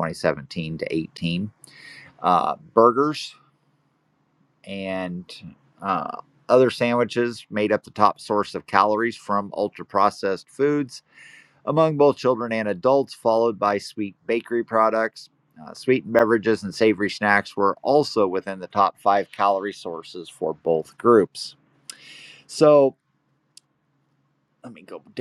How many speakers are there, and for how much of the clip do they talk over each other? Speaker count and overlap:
one, no overlap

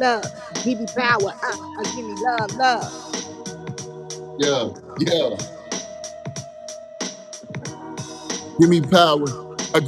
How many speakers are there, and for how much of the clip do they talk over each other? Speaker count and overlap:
two, no overlap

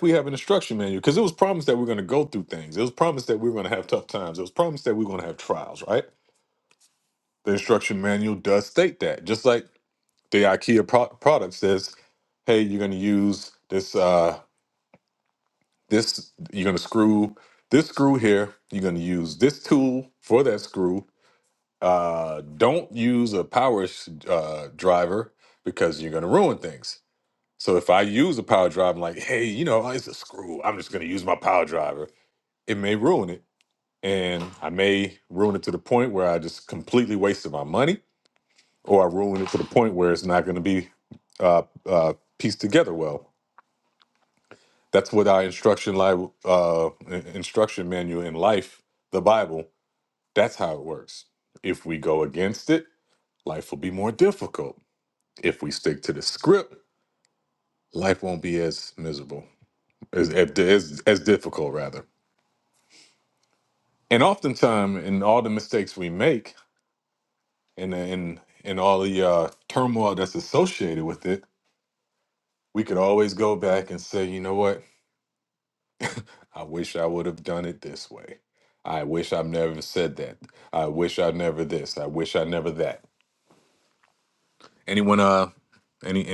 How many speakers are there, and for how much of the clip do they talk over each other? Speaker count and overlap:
one, no overlap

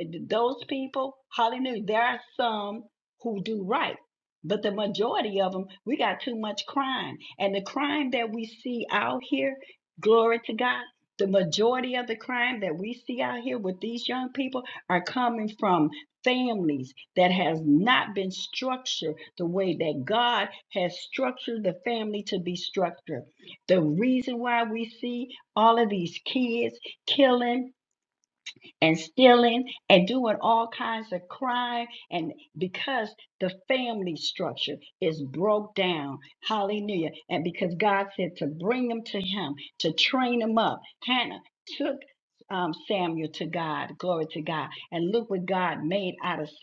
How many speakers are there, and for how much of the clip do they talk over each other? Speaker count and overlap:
one, no overlap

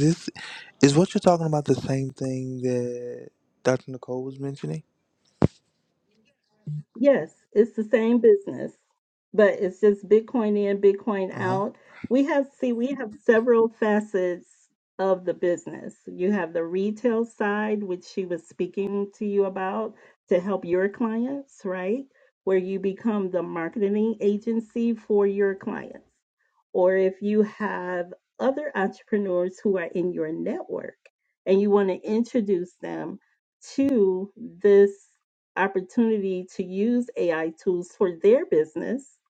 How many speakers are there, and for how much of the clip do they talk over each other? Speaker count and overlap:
two, about 1%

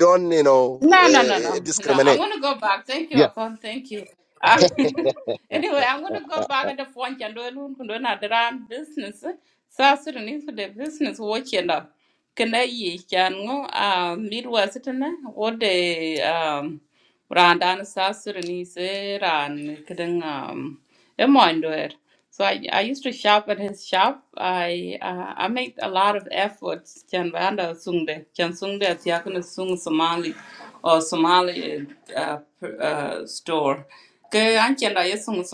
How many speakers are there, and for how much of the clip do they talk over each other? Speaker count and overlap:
two, about 4%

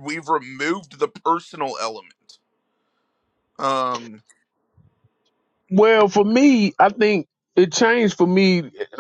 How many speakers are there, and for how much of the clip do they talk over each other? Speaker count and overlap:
two, no overlap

